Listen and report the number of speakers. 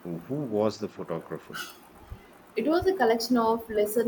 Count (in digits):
2